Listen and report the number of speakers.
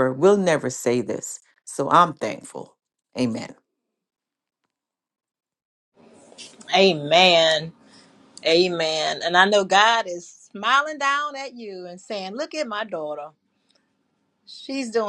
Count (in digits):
2